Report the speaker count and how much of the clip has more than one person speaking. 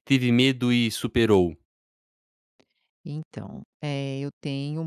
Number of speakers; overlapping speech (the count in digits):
2, no overlap